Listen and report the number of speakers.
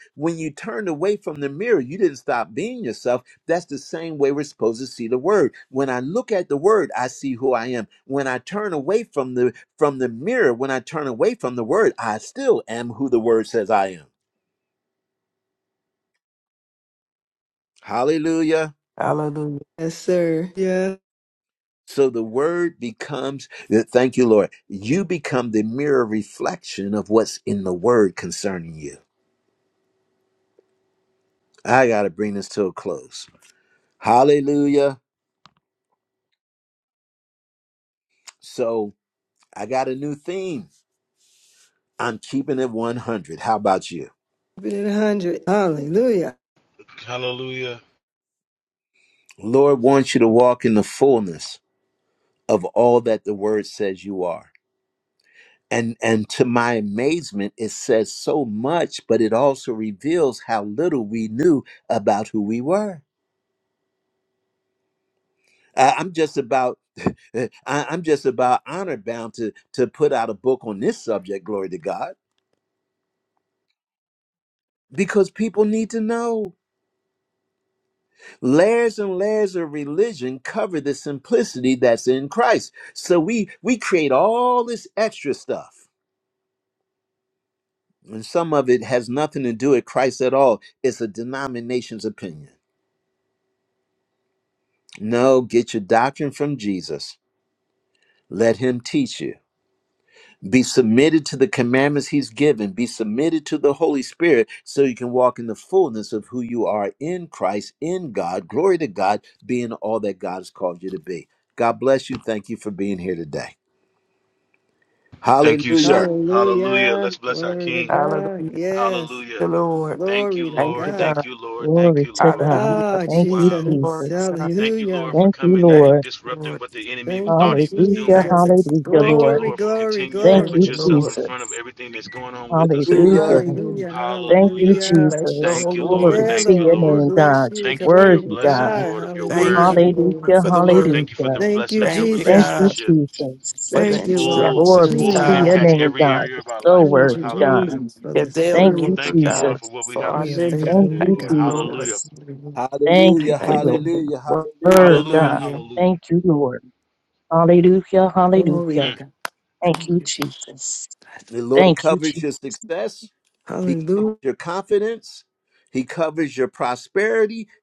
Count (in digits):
5